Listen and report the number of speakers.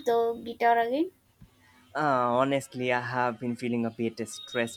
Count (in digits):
2